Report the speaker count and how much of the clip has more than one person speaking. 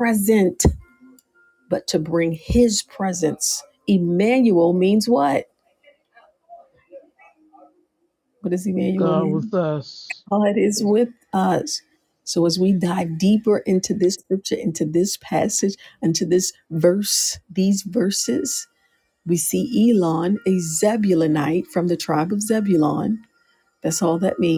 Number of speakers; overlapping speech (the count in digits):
2, about 2%